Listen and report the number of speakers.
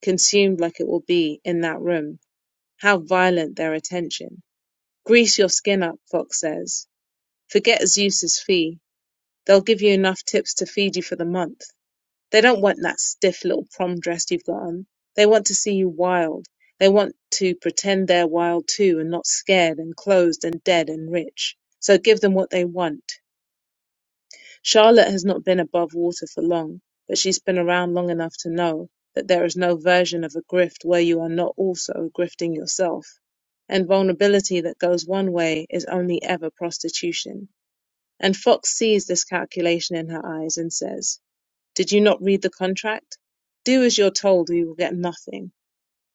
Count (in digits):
1